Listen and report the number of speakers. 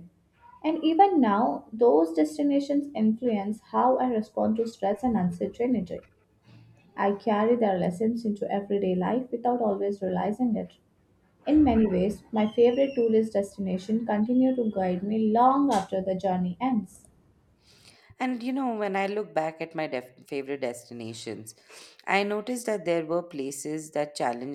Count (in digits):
2